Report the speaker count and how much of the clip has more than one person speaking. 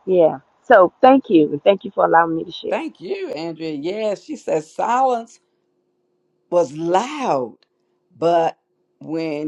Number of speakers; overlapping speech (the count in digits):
2, about 1%